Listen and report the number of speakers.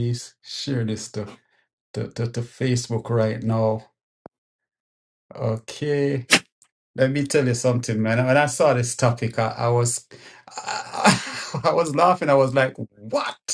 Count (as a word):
one